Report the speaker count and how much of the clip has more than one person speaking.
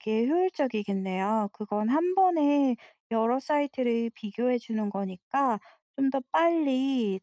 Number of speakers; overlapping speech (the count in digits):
1, no overlap